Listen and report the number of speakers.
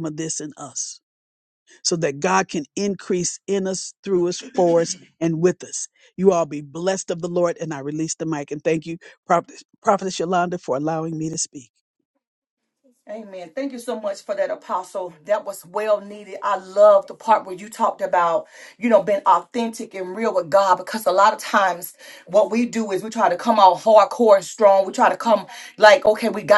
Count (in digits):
2